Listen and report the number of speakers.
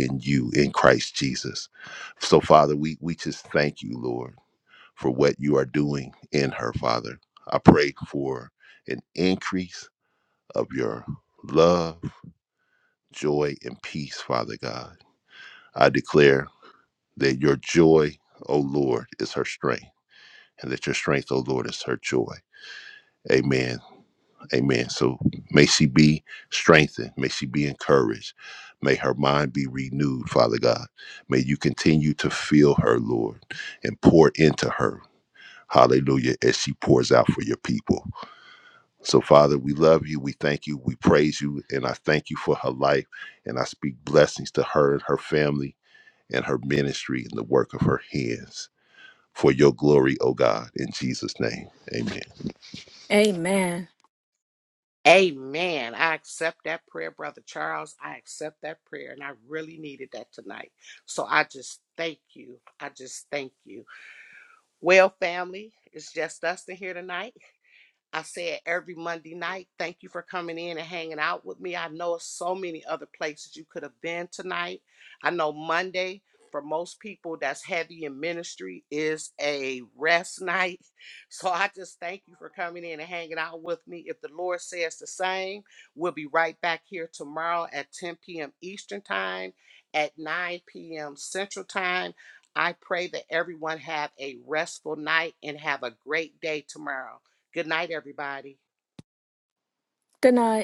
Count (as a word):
three